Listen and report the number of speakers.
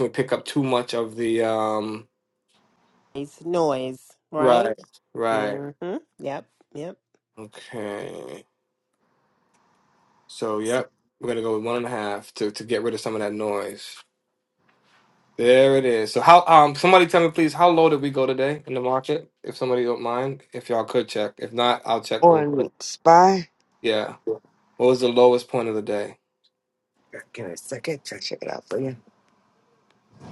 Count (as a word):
three